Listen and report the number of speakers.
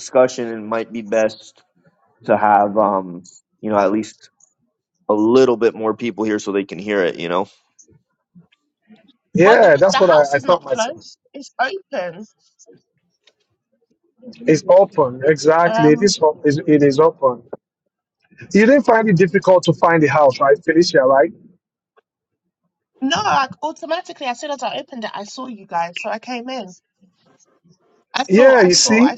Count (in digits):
3